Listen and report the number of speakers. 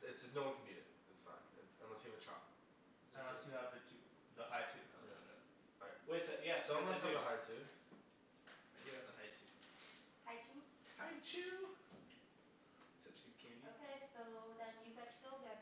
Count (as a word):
four